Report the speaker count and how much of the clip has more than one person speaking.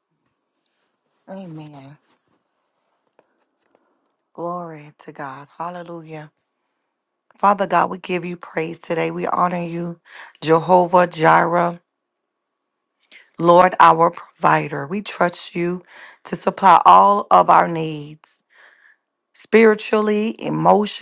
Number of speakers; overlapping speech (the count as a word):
one, no overlap